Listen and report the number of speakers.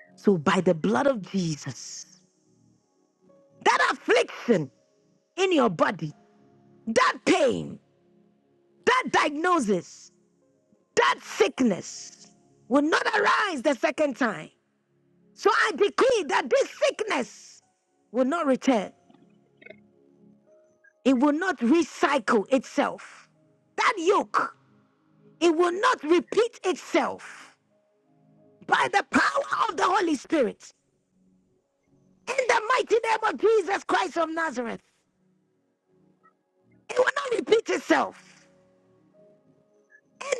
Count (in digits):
1